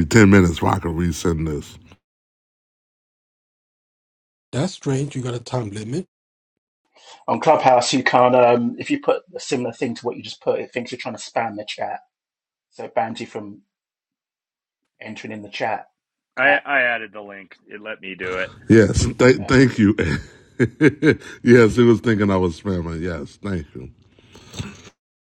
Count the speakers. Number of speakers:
four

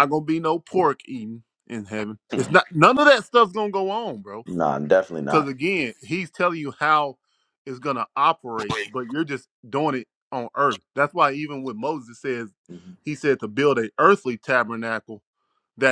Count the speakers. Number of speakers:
two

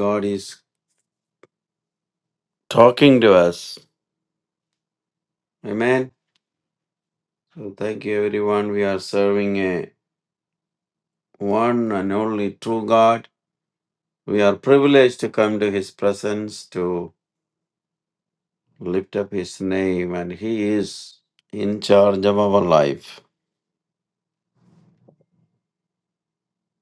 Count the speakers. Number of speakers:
one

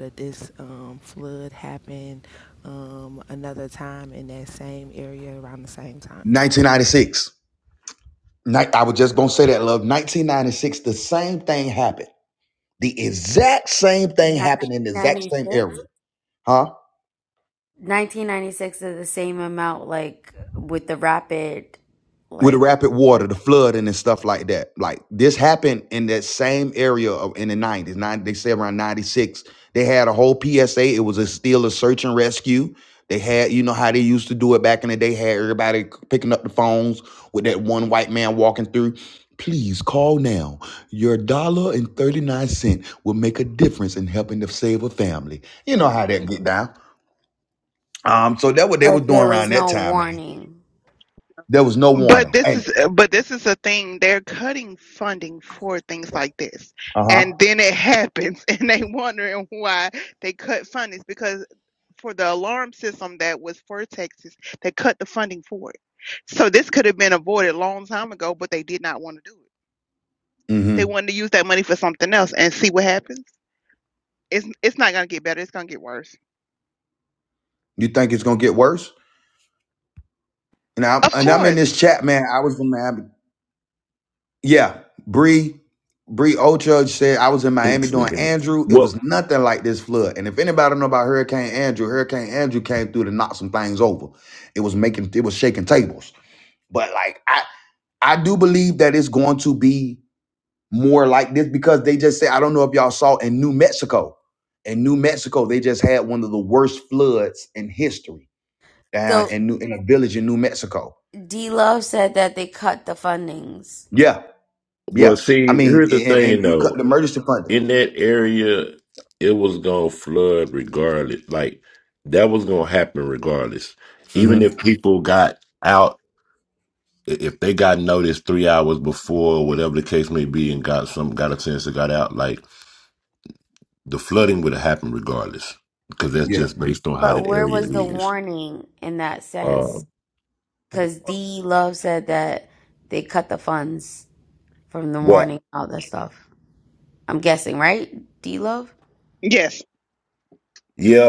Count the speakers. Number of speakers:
five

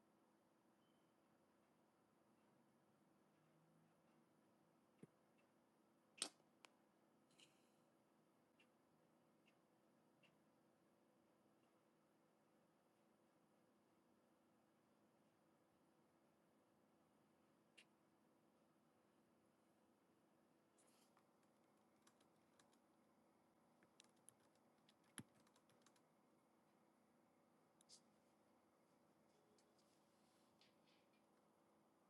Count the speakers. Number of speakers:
zero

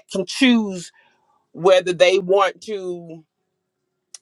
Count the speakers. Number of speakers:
one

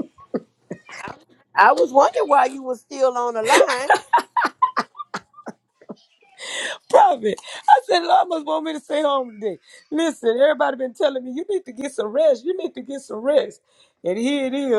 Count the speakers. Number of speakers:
two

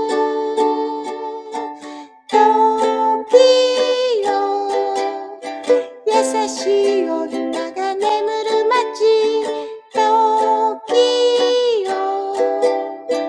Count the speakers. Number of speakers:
one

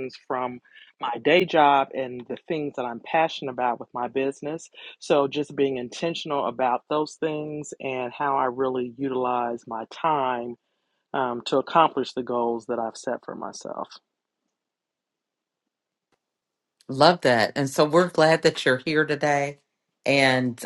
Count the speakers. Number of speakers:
two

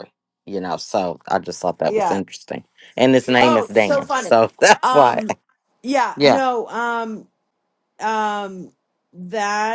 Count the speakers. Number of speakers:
two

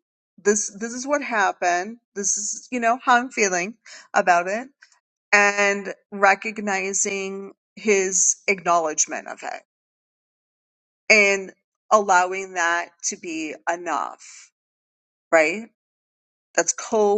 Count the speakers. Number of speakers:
one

